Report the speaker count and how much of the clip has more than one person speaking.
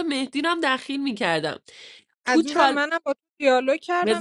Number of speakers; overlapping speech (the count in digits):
2, about 17%